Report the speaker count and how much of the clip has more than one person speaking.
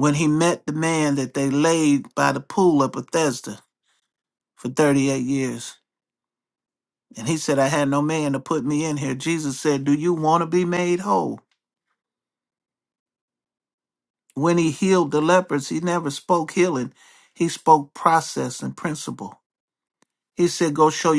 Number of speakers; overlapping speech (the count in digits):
1, no overlap